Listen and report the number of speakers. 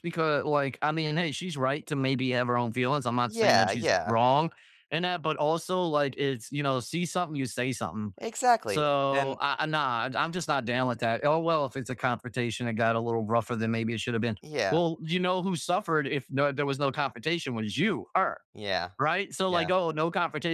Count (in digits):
2